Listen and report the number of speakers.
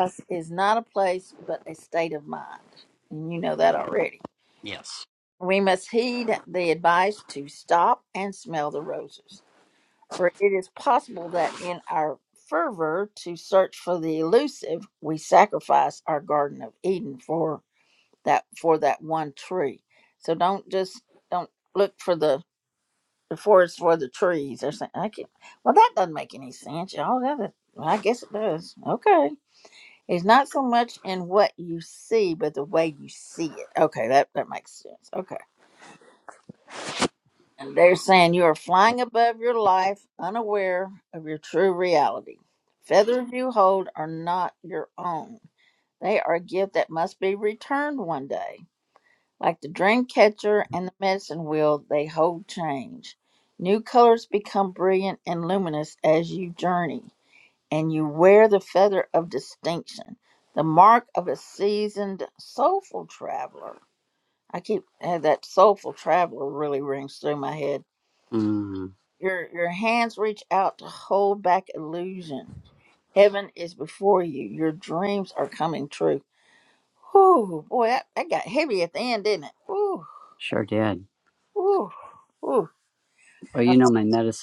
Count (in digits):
2